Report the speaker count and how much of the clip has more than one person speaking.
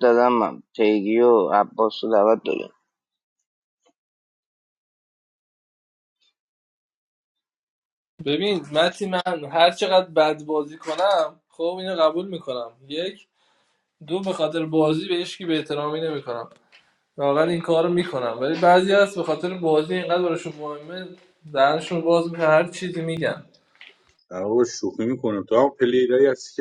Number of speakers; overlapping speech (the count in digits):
3, no overlap